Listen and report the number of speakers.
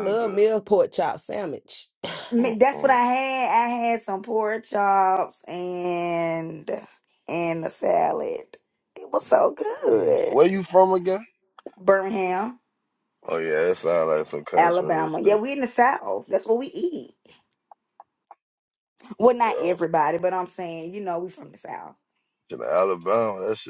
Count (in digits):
3